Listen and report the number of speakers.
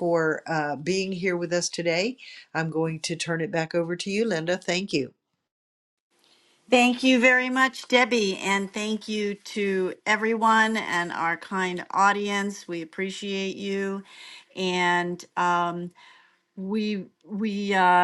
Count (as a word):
two